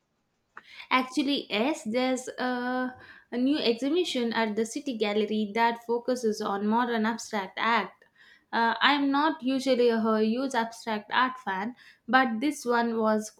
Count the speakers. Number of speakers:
1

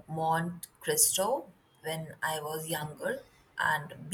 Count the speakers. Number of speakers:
1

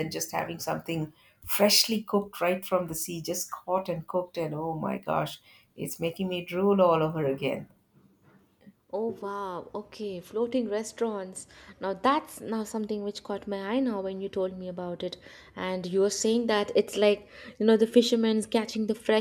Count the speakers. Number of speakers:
2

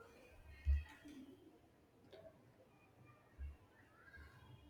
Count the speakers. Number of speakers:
0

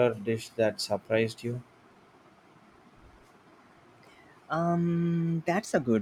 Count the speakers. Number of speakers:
2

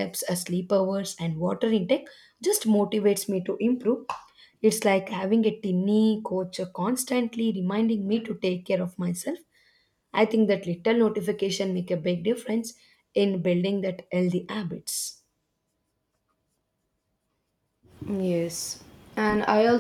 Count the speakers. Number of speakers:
2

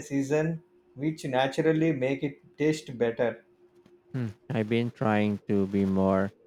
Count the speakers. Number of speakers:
2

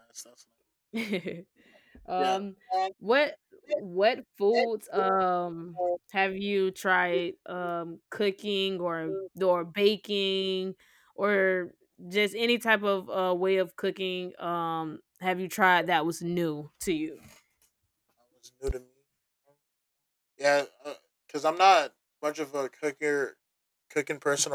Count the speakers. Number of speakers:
2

